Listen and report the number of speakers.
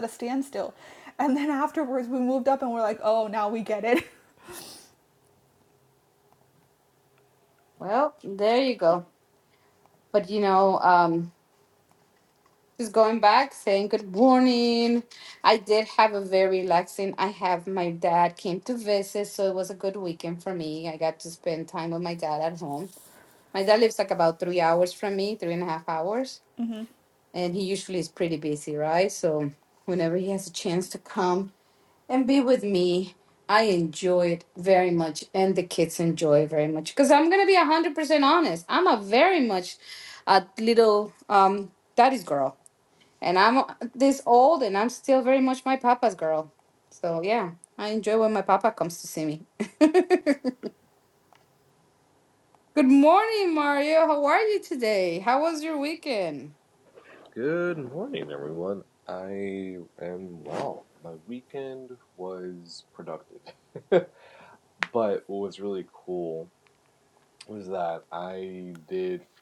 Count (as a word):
three